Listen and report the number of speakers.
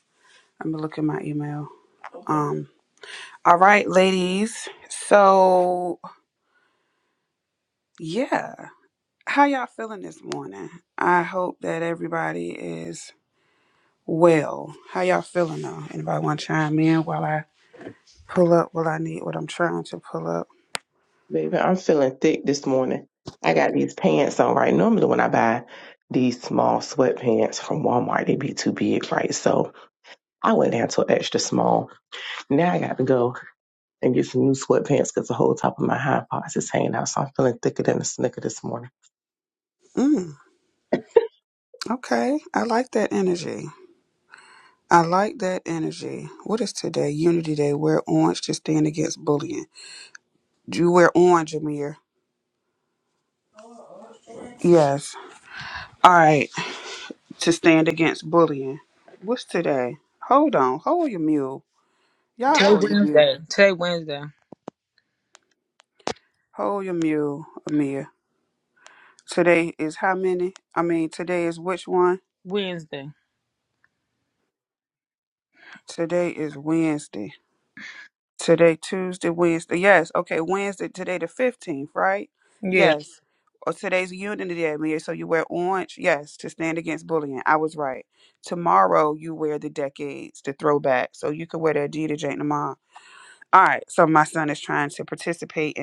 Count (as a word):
three